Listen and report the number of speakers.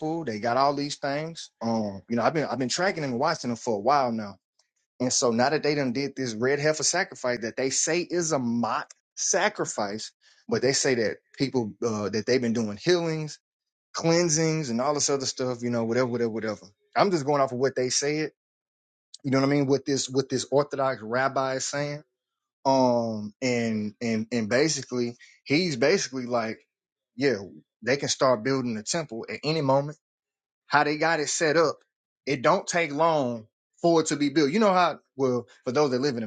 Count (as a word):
one